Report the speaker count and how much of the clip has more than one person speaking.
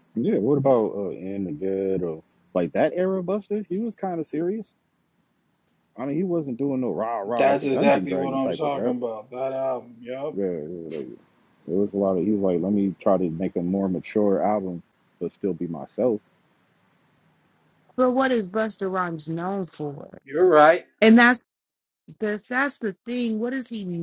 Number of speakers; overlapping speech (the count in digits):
3, about 7%